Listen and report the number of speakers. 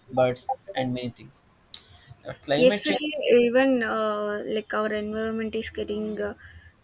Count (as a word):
two